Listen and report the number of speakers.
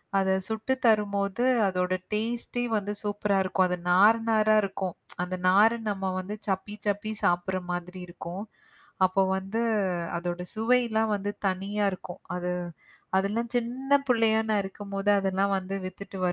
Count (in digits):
1